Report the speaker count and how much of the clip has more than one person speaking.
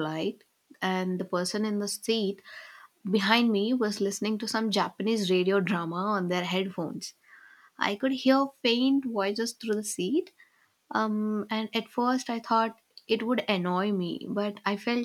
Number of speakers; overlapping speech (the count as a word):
one, no overlap